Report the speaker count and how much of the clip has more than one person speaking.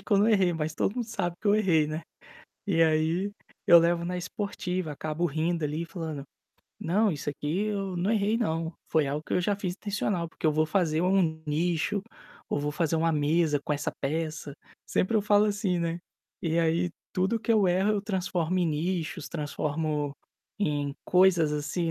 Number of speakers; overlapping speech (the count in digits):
1, no overlap